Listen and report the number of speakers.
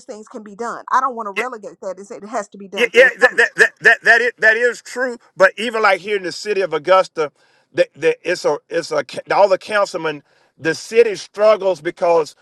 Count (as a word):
two